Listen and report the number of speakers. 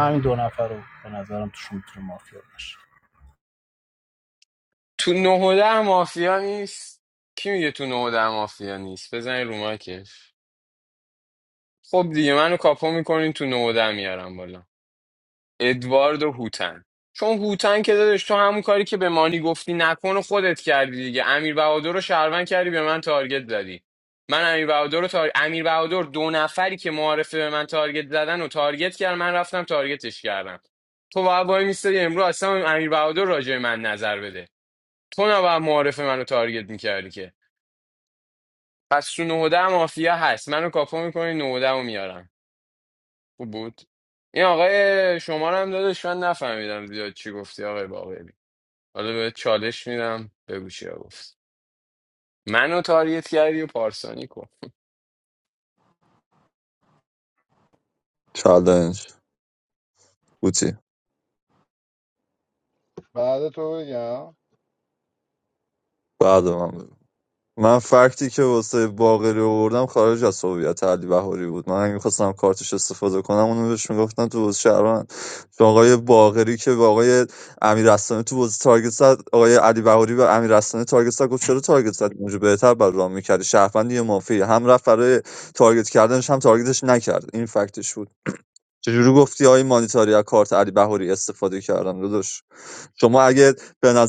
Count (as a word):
four